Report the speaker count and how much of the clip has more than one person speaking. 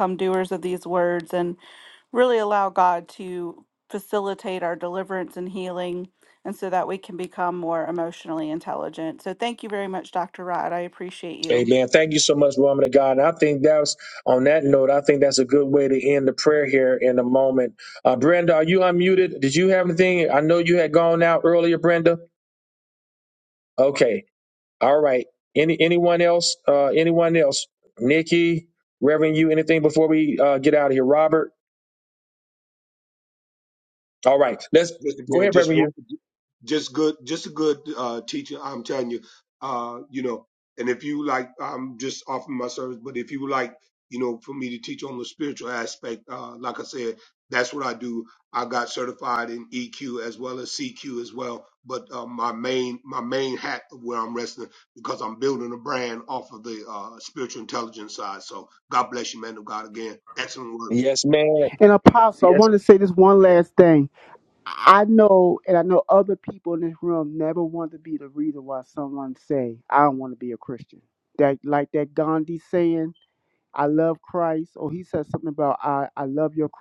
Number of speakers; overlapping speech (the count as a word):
four, about 2%